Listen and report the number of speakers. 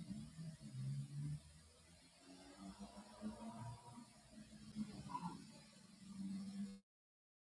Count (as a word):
zero